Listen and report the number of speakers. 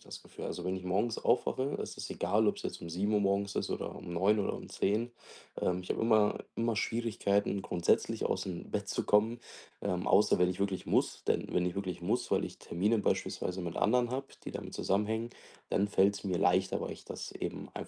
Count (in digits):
1